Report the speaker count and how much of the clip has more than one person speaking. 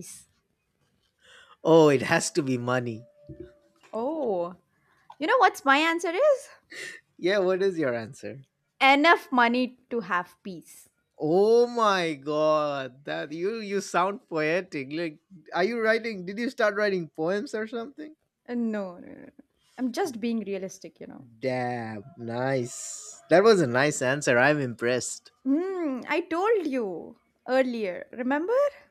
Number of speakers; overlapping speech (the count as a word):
two, no overlap